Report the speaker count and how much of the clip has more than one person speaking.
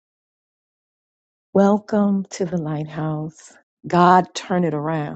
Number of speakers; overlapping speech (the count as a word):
one, no overlap